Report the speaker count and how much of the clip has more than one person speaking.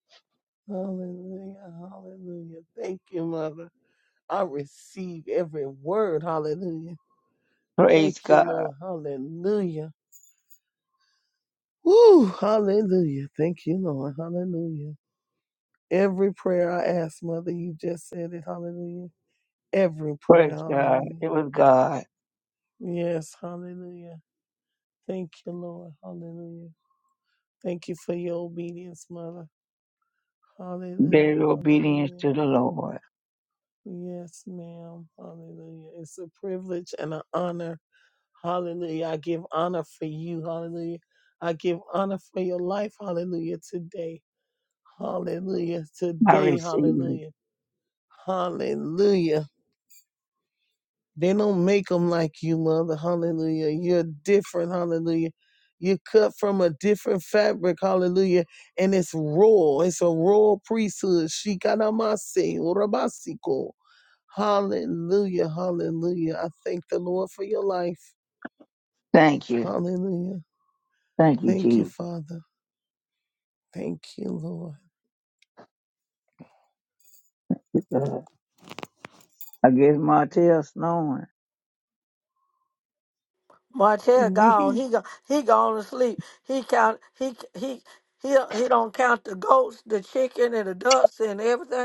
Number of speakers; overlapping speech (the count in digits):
3, about 5%